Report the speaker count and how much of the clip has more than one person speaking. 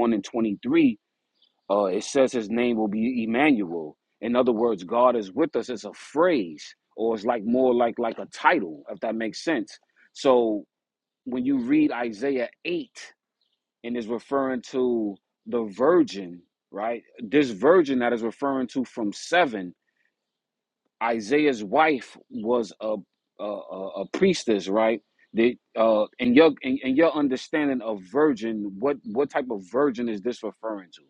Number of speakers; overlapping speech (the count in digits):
1, no overlap